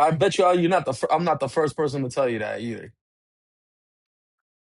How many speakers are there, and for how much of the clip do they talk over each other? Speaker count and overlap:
one, no overlap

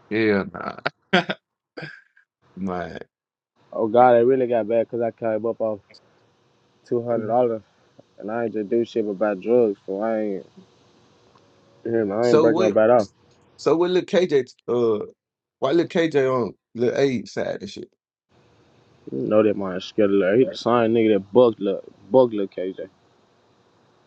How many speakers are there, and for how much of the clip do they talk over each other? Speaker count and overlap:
two, about 2%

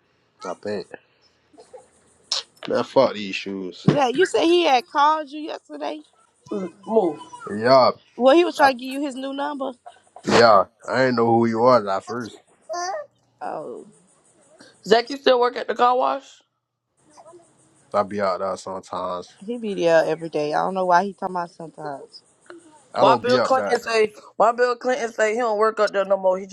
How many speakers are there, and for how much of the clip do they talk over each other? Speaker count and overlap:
three, about 4%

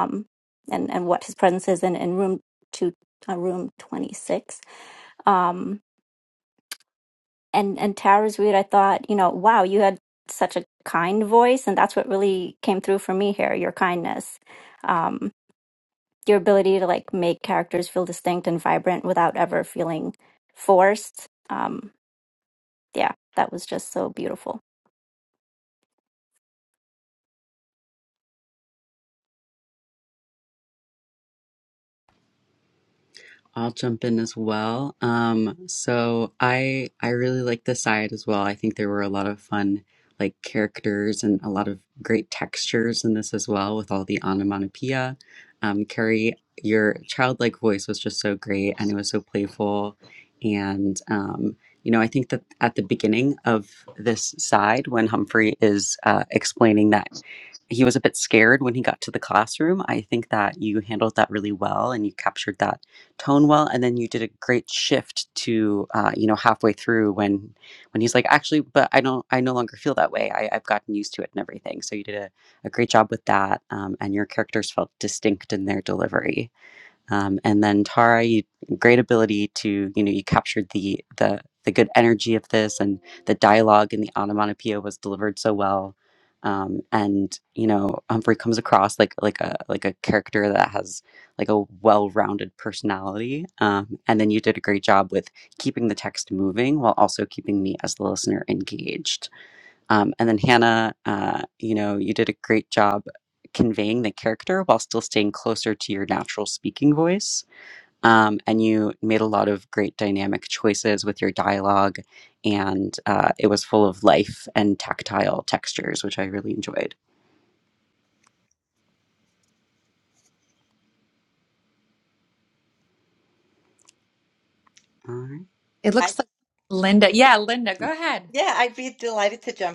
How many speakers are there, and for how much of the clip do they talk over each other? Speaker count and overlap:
four, under 1%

